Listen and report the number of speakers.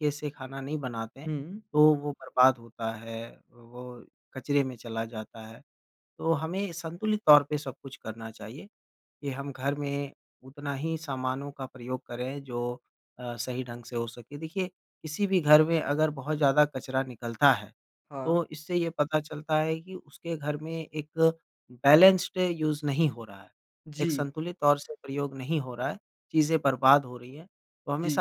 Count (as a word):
two